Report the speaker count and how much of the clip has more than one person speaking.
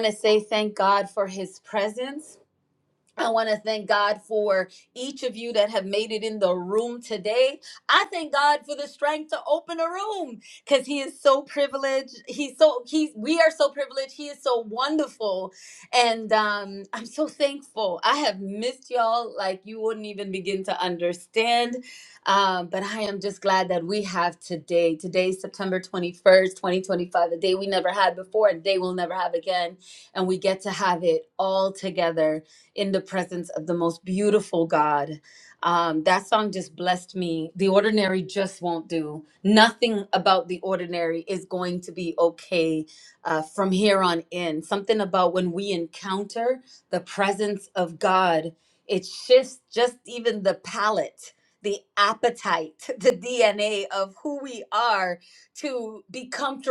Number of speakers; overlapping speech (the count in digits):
1, no overlap